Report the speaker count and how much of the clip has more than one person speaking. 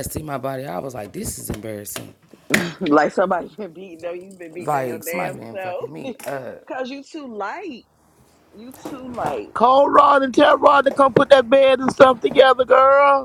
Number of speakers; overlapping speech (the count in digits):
3, about 10%